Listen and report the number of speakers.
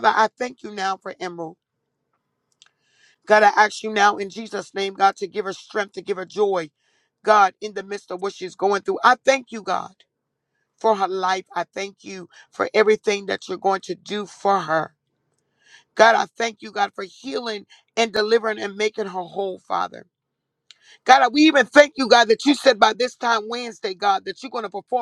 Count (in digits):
1